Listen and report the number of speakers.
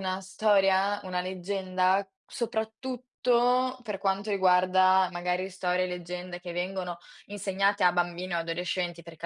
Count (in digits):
1